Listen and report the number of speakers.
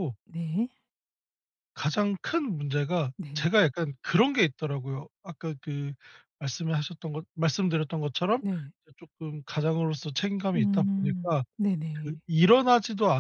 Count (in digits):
2